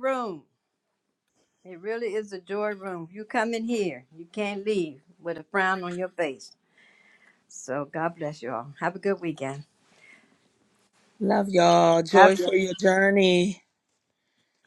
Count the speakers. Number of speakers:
2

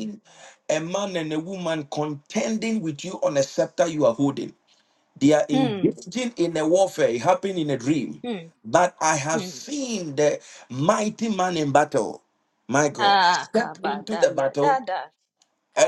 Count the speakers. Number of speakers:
2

